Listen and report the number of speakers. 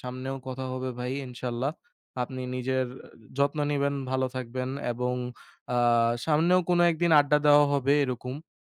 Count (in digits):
1